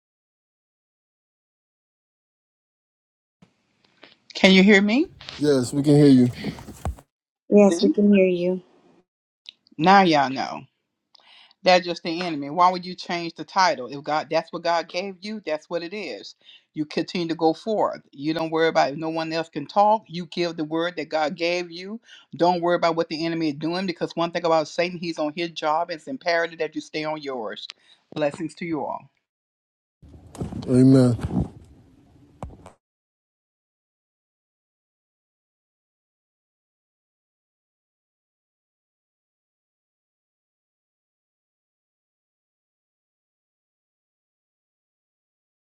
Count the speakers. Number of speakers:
three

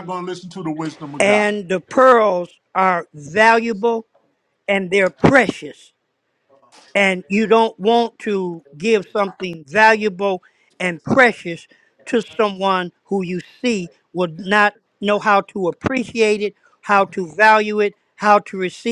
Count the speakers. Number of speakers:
two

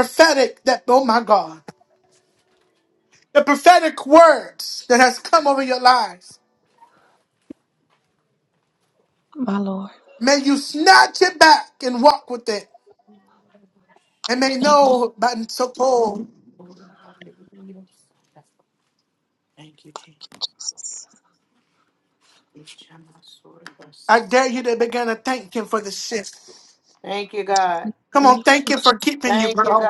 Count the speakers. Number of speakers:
three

